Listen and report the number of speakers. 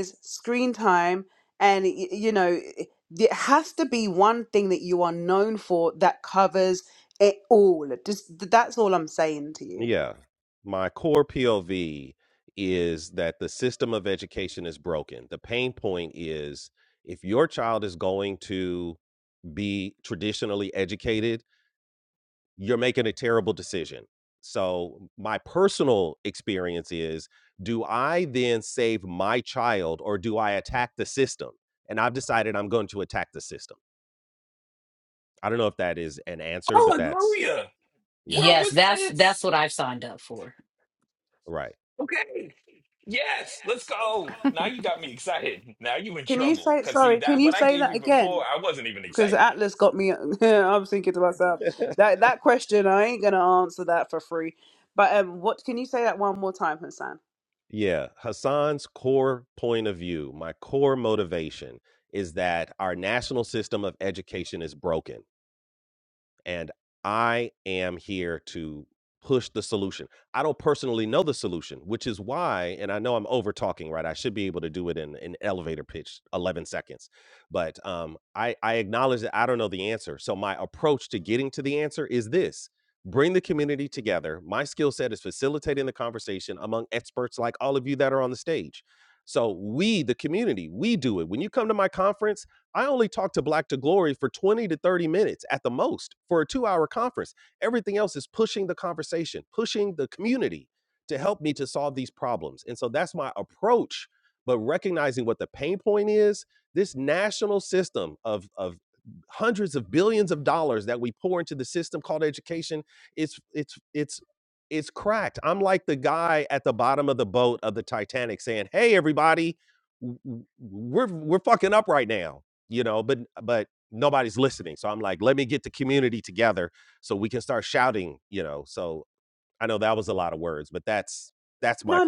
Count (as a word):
four